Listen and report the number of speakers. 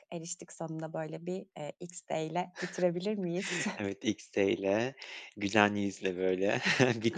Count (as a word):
two